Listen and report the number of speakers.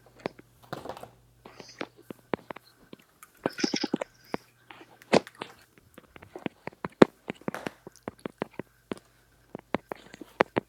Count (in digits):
0